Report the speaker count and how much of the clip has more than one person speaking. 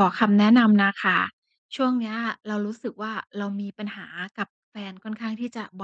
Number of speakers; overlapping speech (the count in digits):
1, no overlap